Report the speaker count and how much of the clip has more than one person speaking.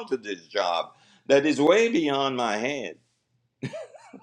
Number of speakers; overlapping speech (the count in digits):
1, no overlap